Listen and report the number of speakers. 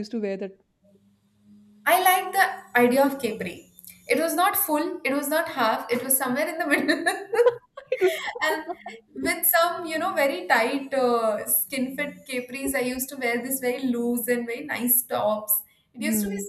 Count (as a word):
two